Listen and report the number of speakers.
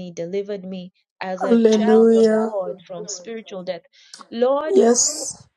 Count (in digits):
2